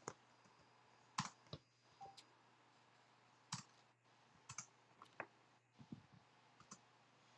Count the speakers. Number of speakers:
zero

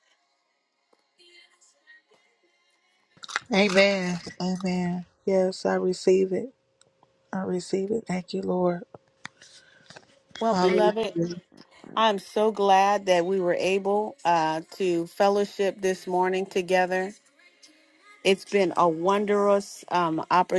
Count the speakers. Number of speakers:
two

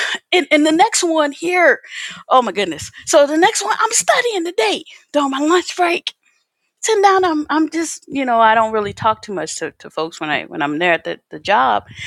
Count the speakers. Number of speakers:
one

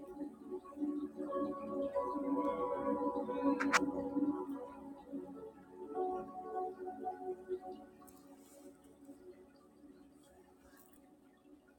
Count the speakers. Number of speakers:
zero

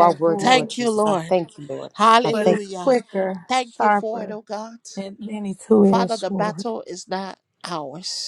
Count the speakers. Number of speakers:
three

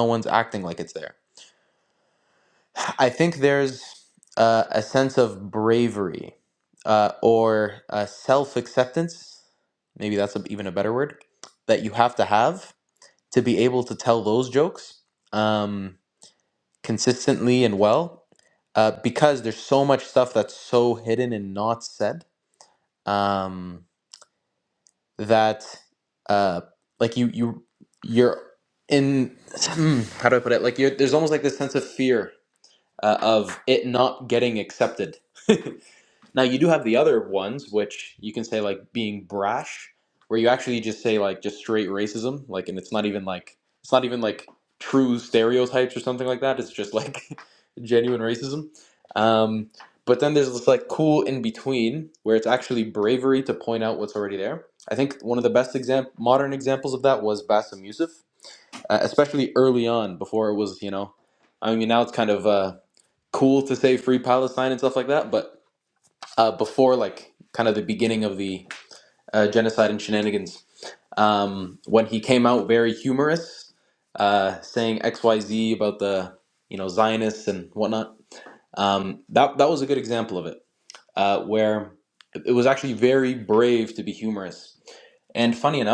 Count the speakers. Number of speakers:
one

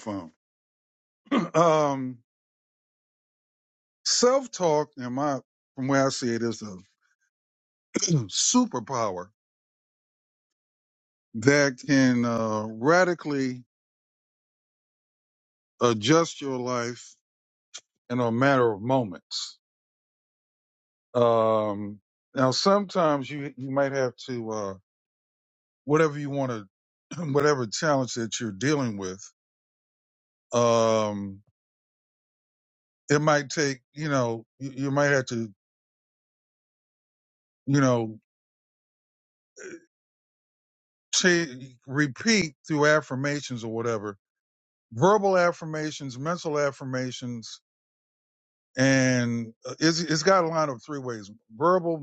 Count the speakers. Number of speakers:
one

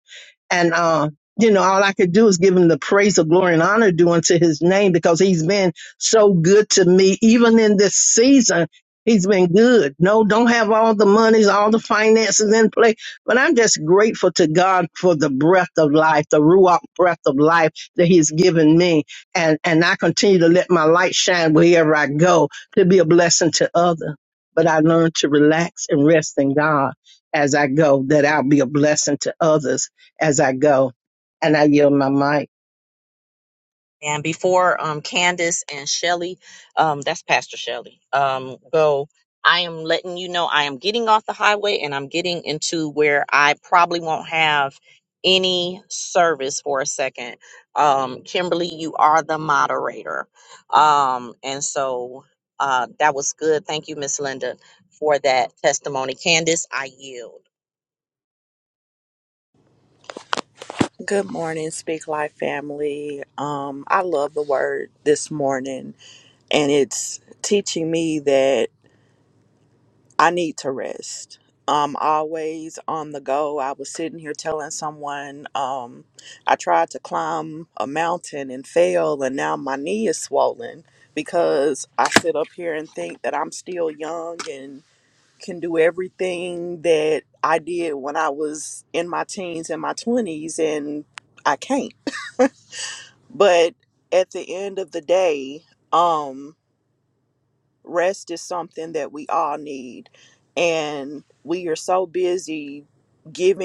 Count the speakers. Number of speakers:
three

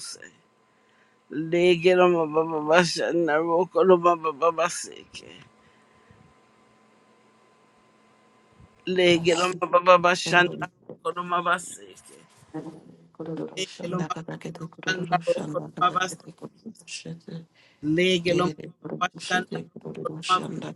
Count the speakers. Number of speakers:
two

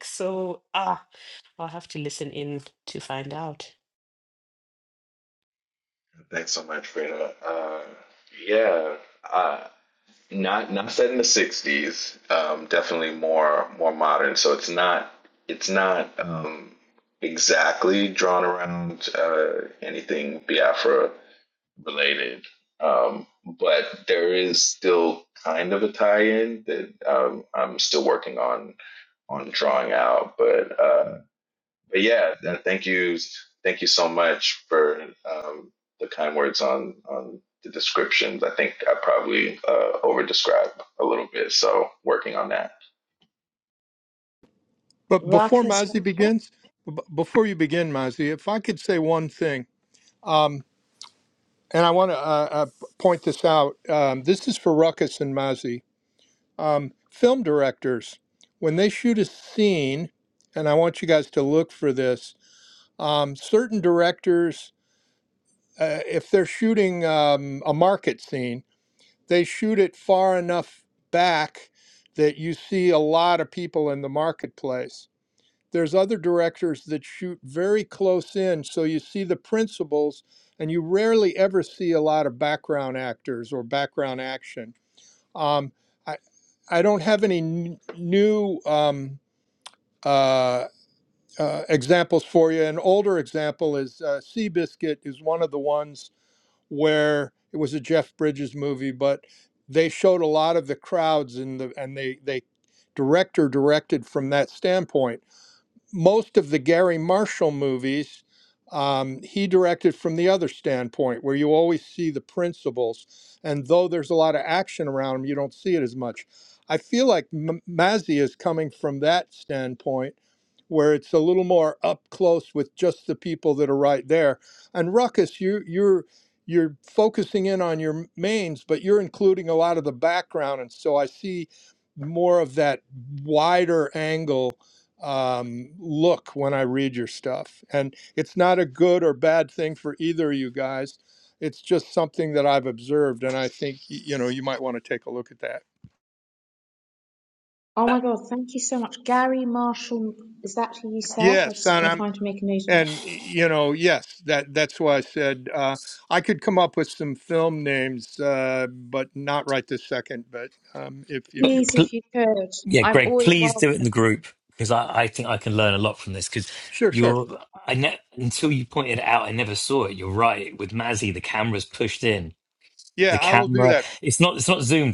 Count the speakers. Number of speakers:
five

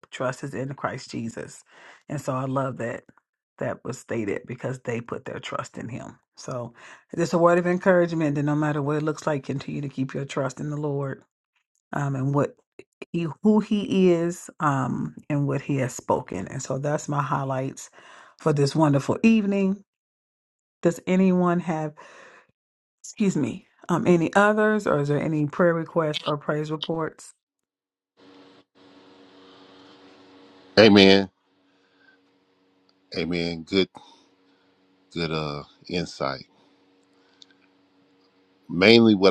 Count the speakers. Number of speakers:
two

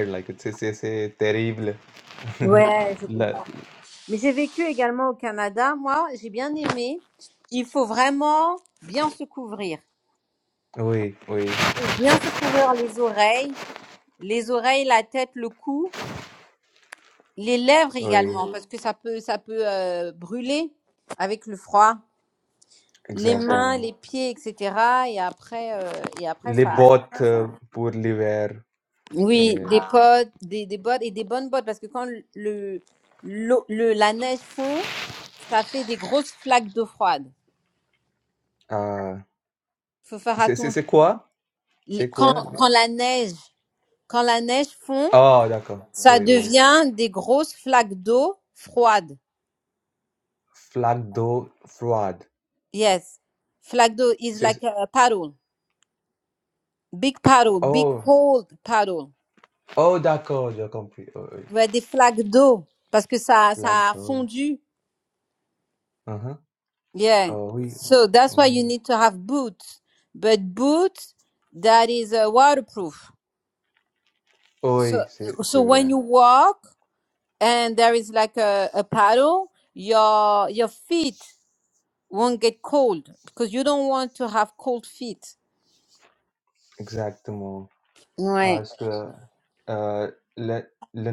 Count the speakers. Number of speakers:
two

